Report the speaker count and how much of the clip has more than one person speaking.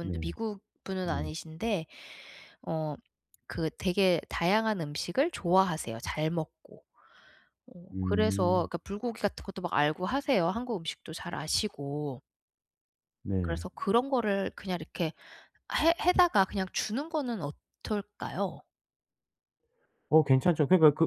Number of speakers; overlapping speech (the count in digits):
2, about 6%